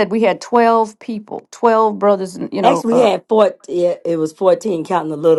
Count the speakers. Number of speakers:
2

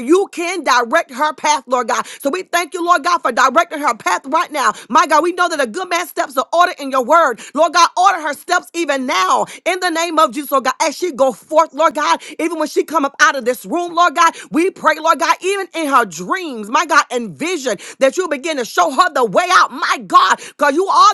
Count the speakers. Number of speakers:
1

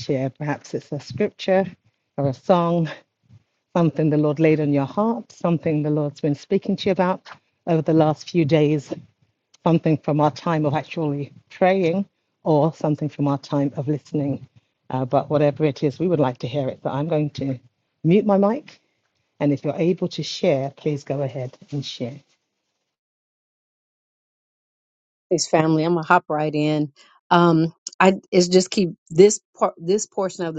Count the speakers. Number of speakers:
2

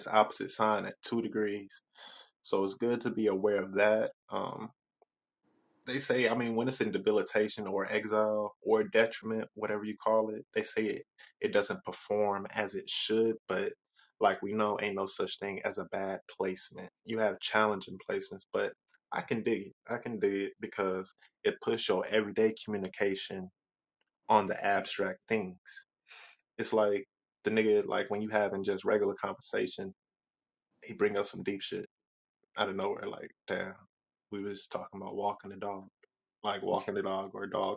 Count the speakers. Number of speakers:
1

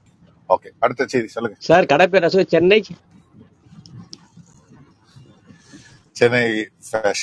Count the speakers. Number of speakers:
2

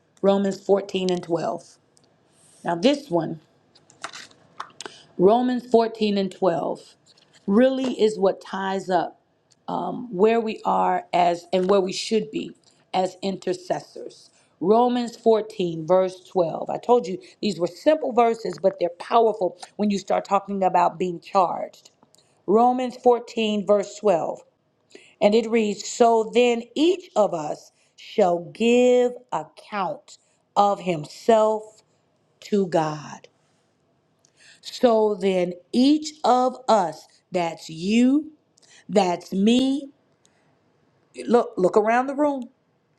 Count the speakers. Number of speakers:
1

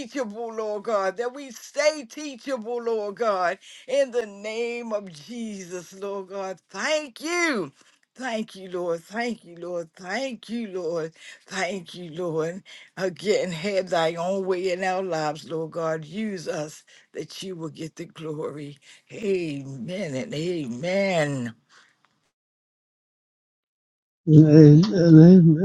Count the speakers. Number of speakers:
2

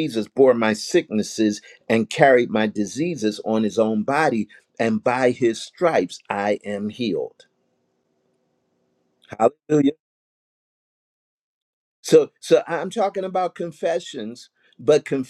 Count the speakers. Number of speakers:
1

